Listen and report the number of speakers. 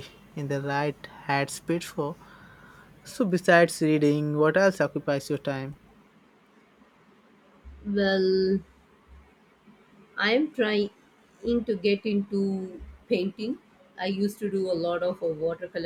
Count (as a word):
two